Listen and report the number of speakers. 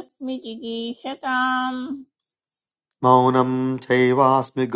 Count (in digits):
2